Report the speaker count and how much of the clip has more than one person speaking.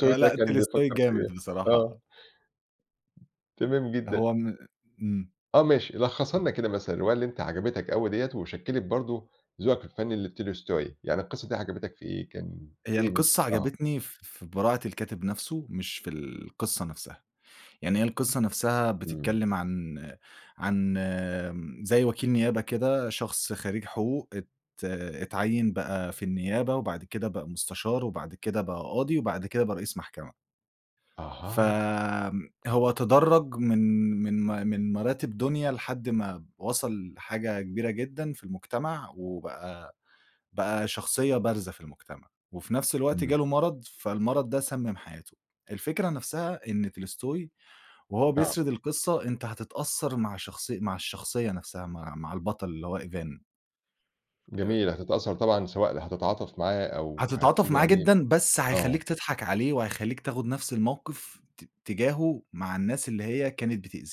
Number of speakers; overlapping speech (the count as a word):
two, about 7%